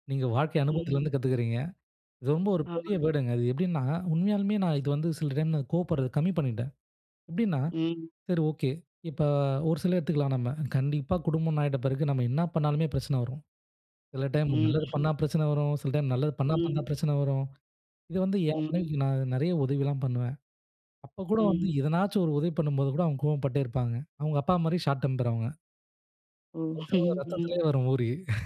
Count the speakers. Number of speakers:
2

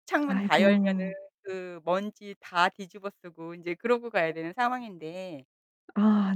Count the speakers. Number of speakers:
2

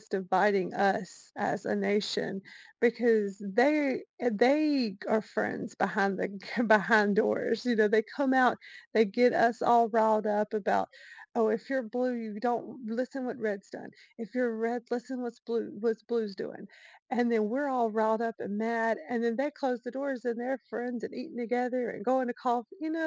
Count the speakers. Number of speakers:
1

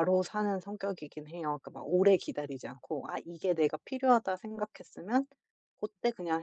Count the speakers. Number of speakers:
1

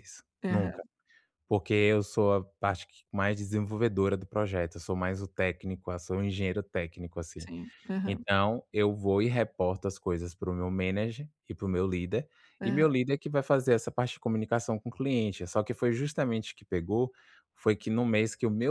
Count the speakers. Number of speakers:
2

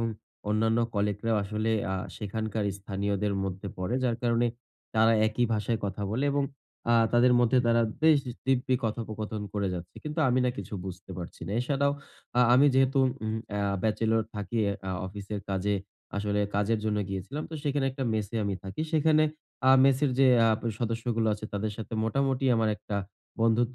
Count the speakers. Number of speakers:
1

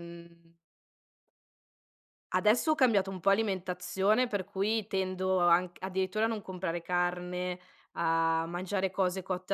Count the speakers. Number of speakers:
1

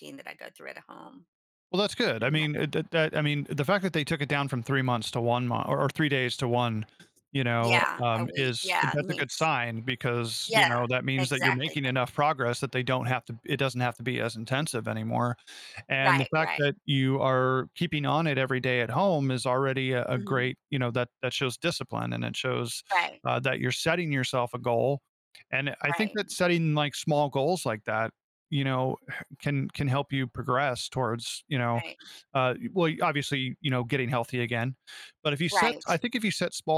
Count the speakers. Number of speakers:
2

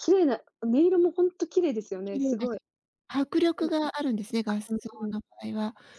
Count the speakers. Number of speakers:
2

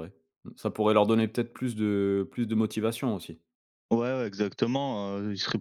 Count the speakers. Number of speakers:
2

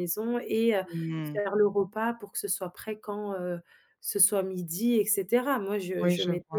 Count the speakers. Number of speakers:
2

